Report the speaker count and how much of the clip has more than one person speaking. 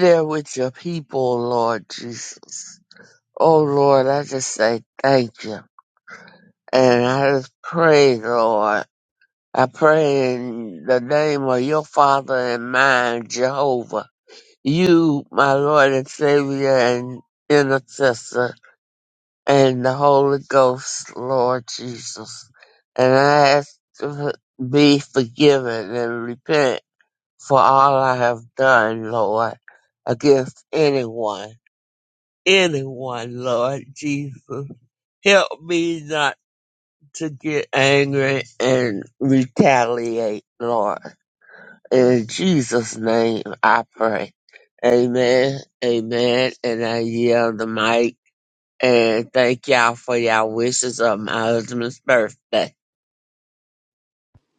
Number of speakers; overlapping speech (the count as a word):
one, no overlap